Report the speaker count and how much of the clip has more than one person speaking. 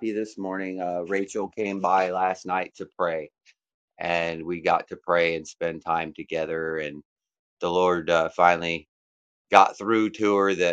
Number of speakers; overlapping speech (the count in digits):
1, no overlap